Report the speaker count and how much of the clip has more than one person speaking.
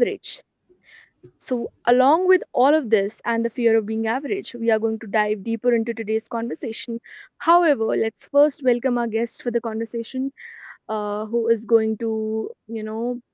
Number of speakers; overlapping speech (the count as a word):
one, no overlap